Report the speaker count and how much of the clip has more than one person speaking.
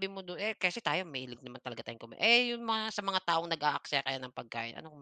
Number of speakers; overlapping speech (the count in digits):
1, no overlap